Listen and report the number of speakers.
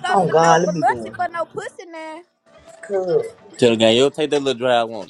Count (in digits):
3